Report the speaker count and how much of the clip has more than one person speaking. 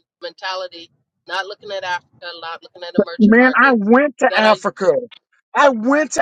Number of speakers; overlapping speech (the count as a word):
two, about 13%